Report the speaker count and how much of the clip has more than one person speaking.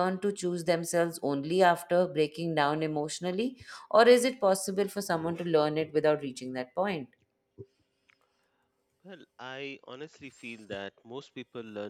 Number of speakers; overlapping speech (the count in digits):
2, no overlap